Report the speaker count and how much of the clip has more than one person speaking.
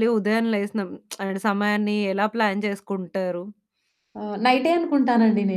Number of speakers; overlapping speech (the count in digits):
2, no overlap